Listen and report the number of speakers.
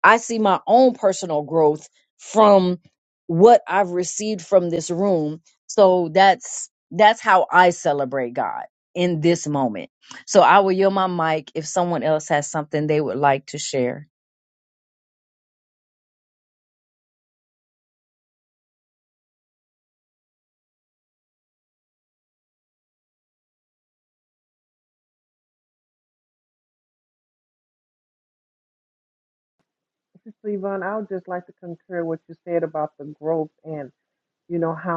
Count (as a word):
two